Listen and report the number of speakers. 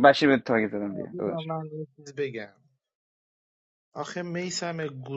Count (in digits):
2